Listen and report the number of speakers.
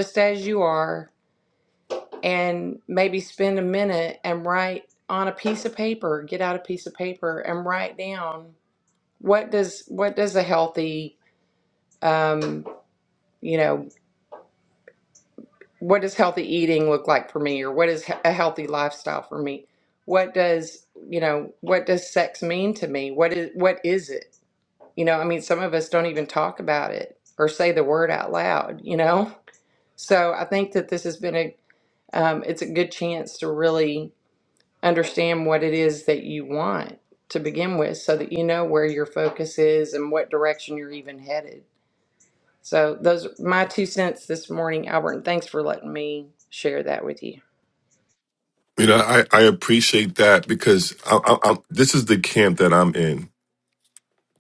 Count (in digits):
2